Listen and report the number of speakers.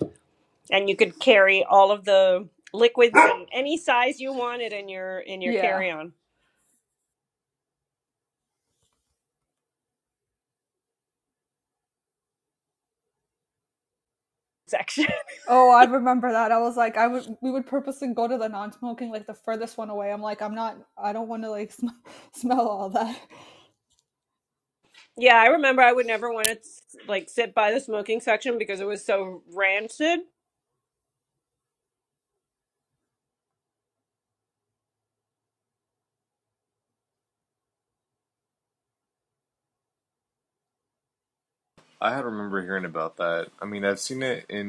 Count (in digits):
3